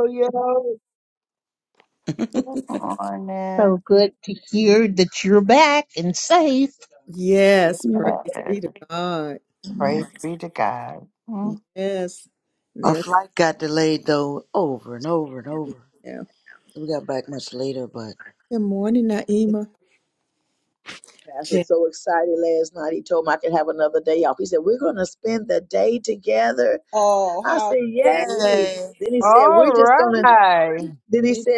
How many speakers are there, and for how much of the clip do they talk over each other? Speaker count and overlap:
6, about 9%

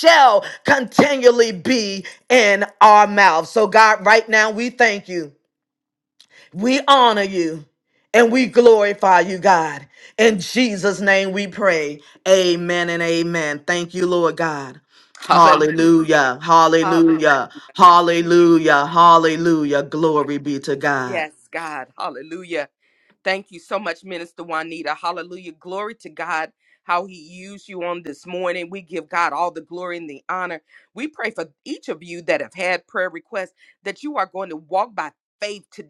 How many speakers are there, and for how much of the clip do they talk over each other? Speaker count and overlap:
2, about 3%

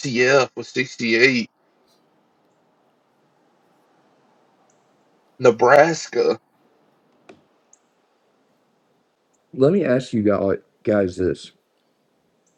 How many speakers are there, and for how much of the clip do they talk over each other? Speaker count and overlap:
2, no overlap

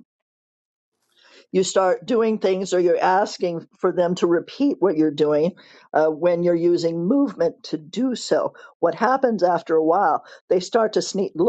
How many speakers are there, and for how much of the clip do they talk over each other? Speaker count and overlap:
1, no overlap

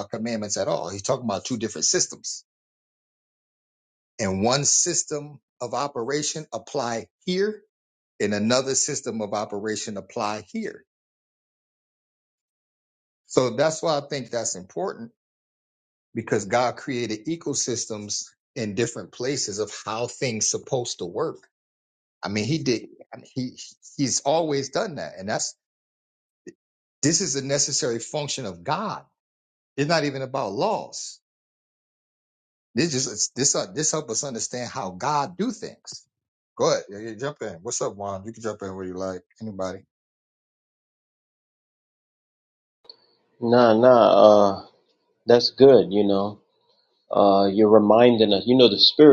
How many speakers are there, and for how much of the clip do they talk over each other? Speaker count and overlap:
2, no overlap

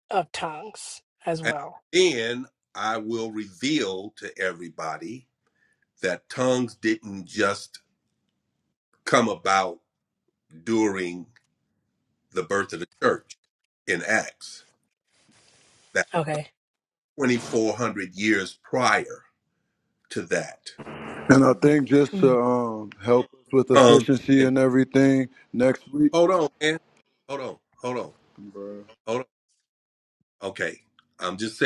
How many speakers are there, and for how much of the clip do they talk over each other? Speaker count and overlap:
3, about 2%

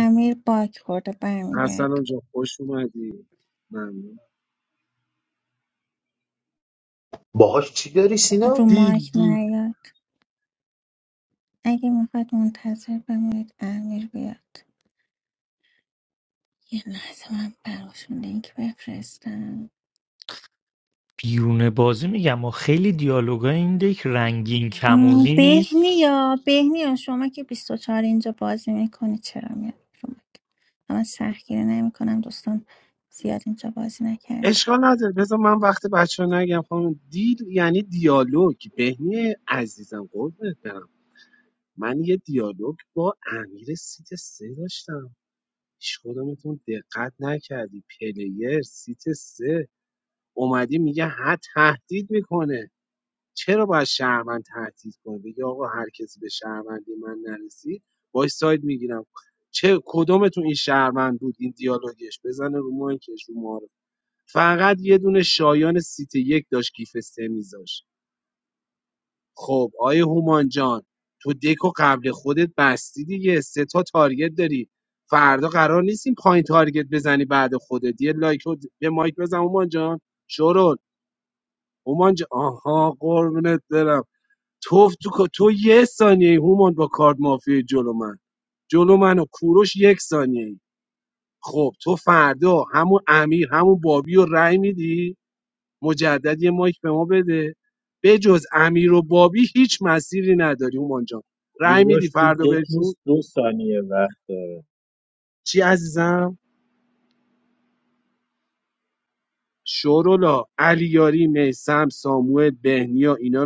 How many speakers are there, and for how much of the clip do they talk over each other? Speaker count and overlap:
5, about 3%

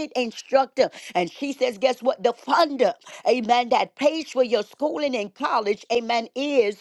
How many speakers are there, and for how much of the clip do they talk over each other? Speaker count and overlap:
1, no overlap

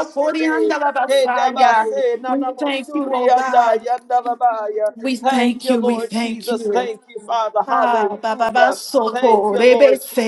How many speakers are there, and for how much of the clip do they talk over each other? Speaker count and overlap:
2, about 71%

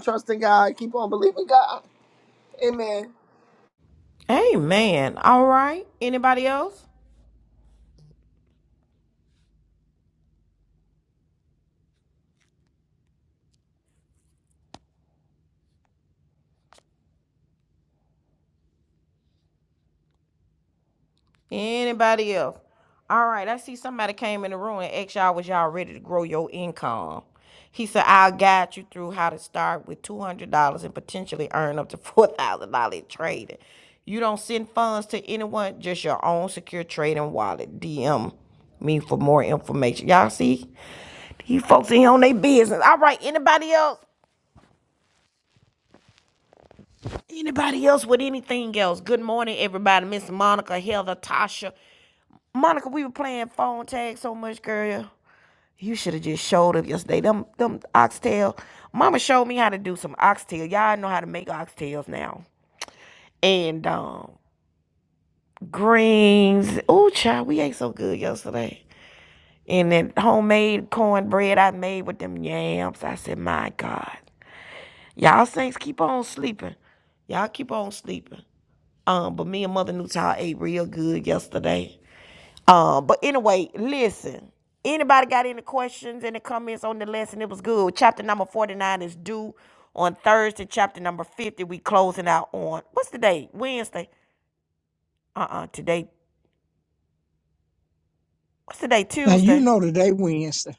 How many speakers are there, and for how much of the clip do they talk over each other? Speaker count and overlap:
3, under 1%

